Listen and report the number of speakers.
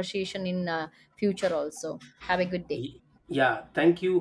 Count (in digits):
2